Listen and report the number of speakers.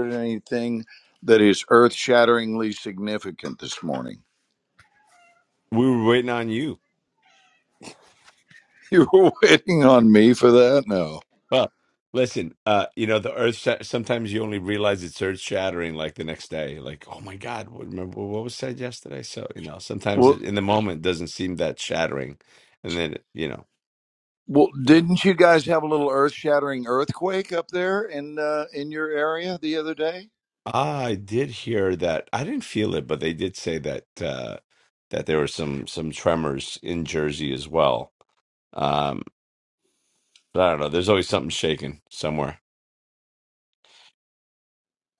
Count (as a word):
two